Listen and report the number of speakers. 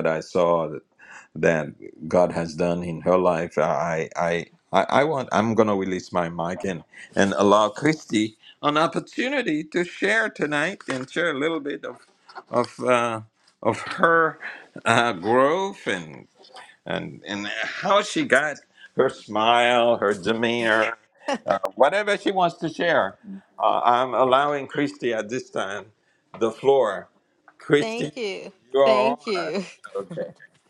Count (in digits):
2